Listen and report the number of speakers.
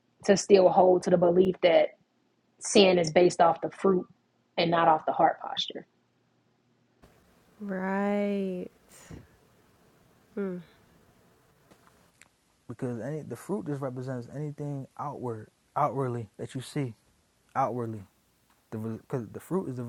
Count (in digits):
3